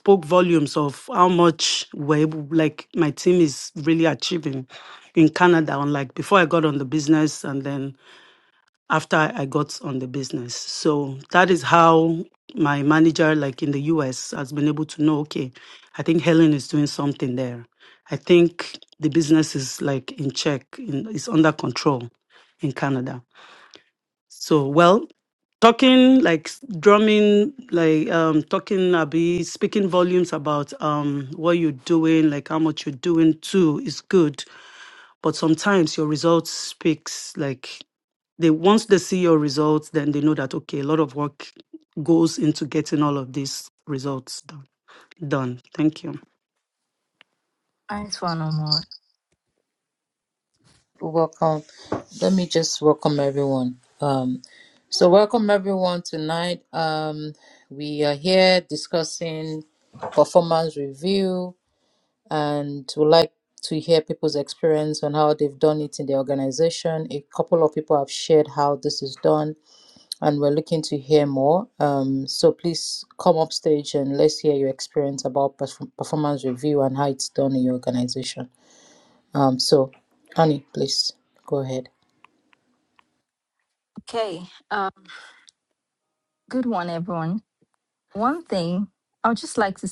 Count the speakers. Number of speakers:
3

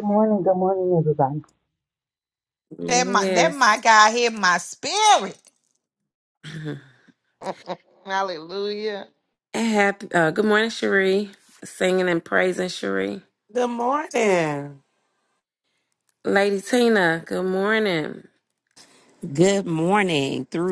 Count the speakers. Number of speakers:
6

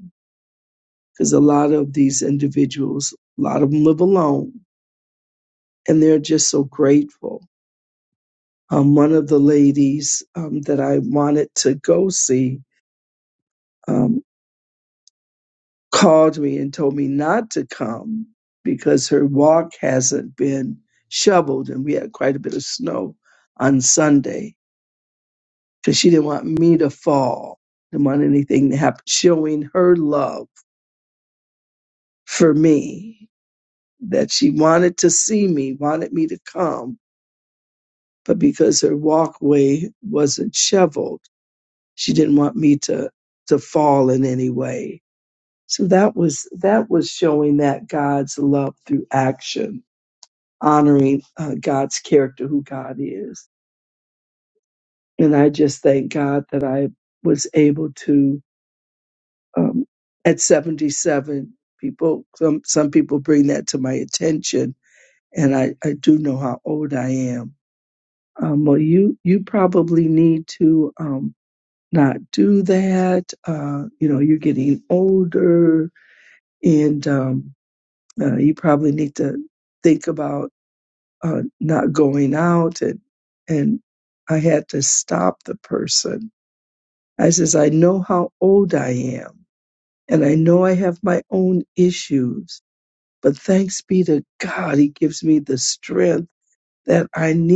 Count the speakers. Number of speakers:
1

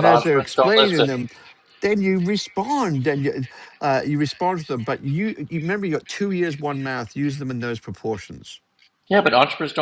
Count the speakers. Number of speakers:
2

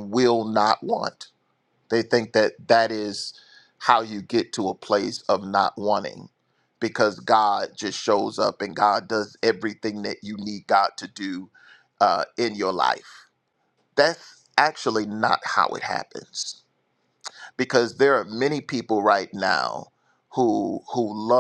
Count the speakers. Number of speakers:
1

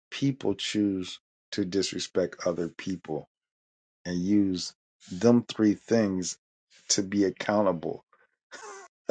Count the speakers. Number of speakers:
1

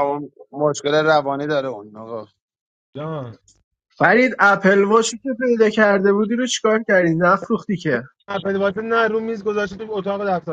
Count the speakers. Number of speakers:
3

